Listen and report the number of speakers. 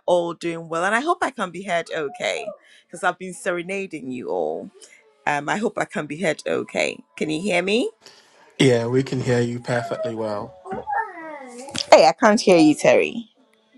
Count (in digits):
2